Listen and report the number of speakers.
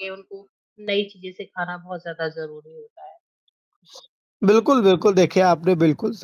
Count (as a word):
two